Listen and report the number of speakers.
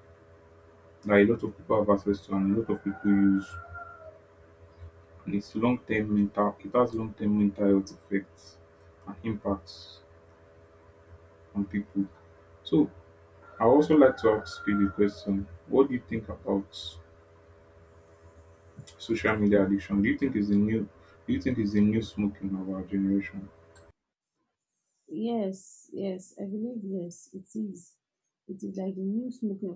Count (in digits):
2